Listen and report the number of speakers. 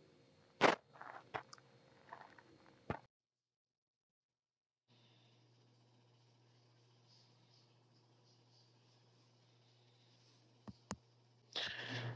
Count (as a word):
zero